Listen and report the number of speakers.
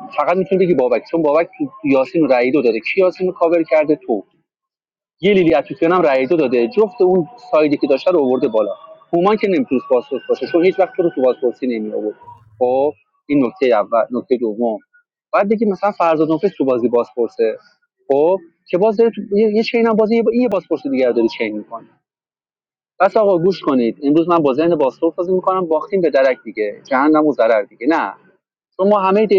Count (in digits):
1